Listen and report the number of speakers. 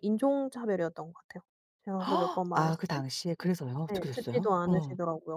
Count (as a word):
two